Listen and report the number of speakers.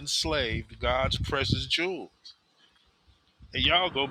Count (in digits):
1